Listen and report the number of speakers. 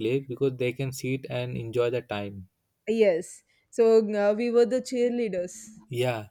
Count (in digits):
2